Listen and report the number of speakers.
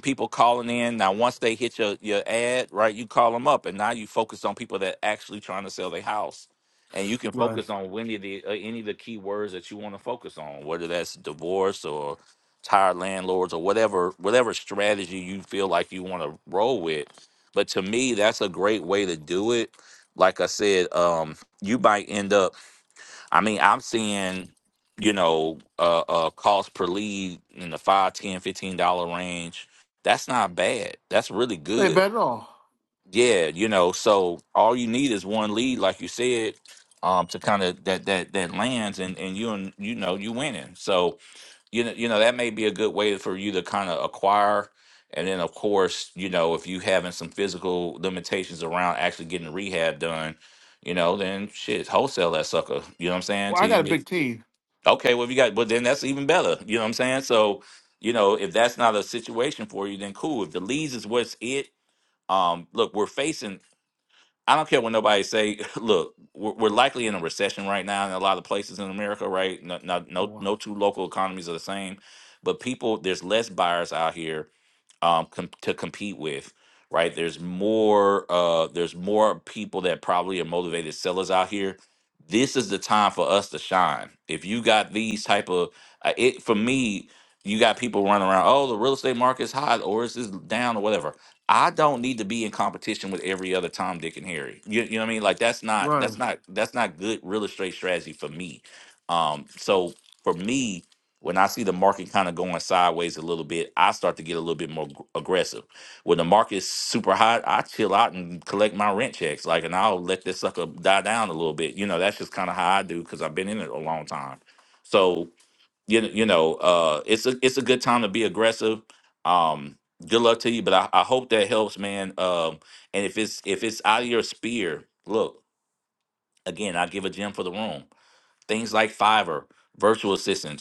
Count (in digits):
2